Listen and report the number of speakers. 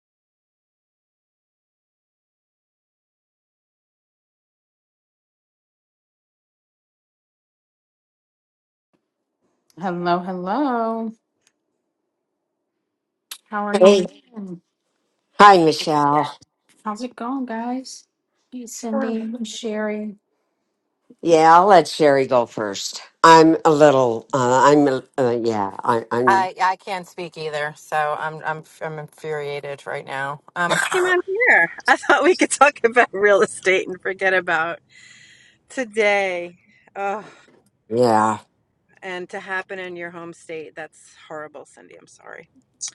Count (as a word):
three